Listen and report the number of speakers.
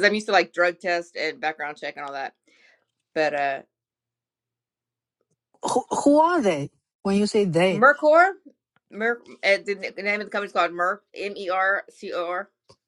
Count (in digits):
2